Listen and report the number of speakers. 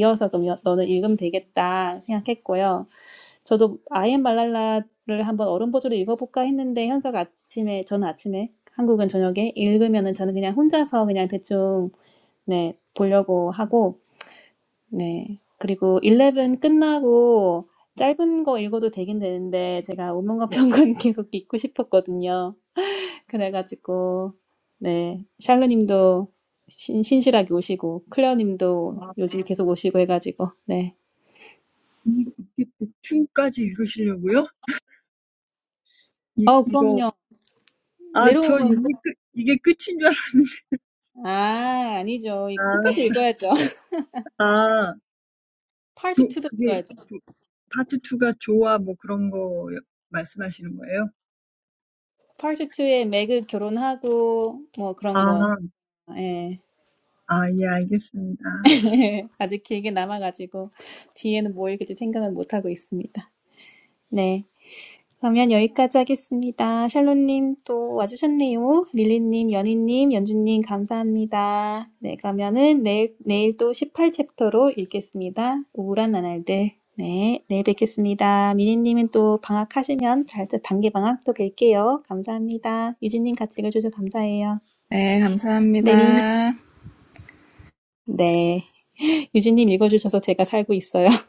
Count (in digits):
3